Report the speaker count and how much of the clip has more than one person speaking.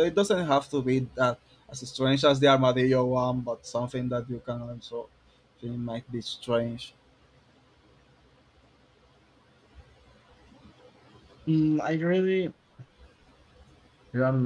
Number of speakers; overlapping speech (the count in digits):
2, no overlap